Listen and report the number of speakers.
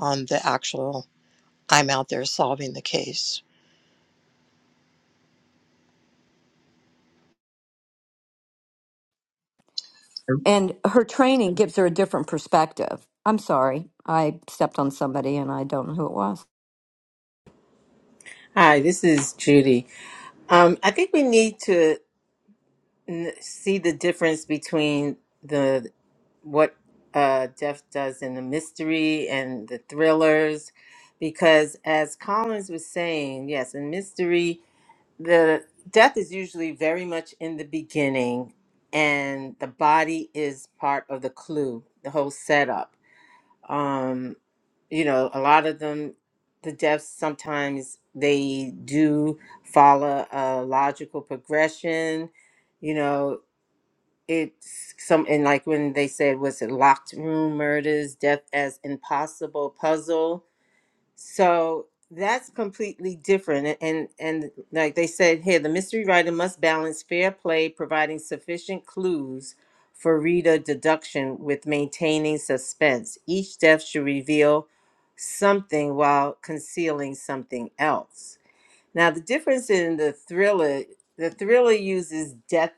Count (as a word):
three